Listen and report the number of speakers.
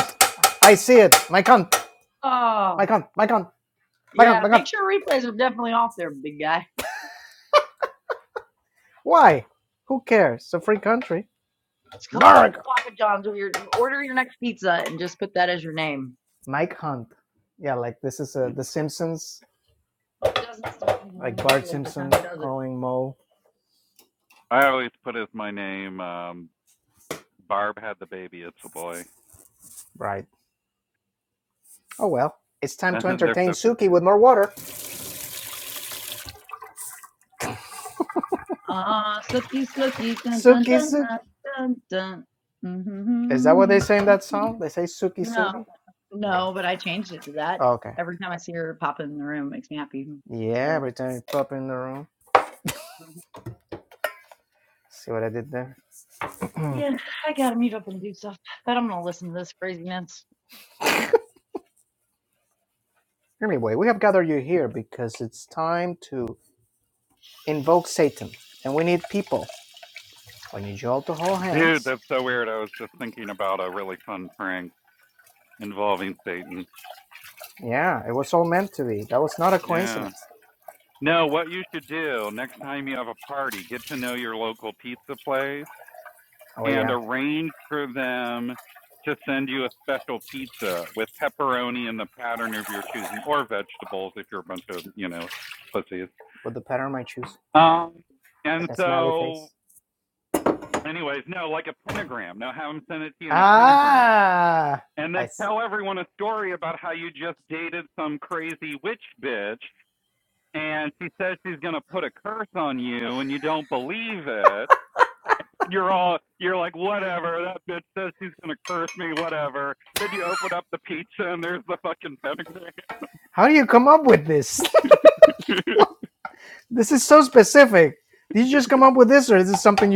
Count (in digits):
3